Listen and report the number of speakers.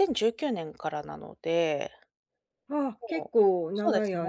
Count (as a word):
two